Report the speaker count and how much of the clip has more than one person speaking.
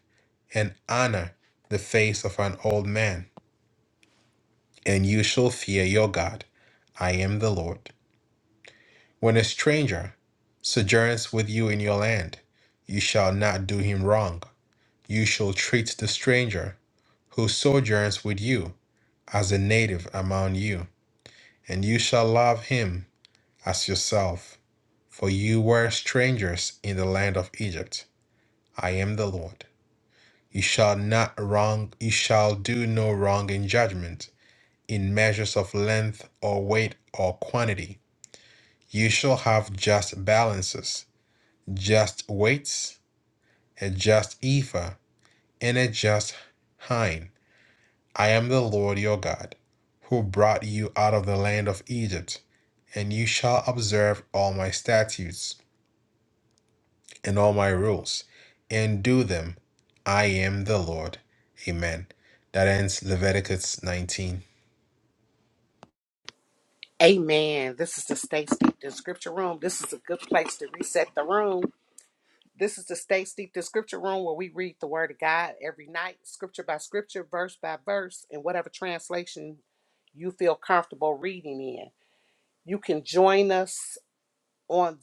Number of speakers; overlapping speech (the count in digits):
2, no overlap